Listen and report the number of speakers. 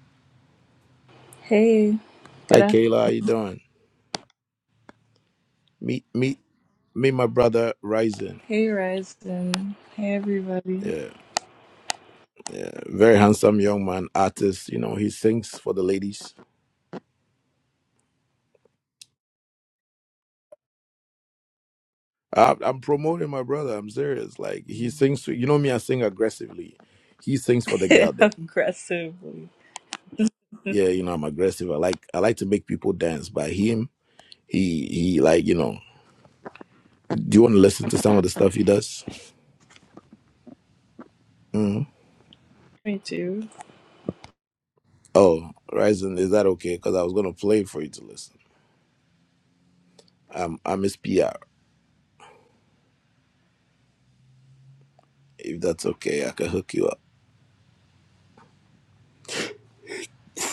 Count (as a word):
two